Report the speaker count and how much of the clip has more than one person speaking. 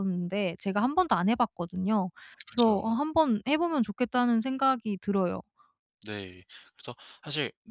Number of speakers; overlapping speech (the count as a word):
two, about 6%